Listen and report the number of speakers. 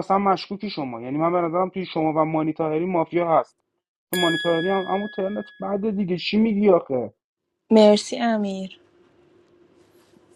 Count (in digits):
2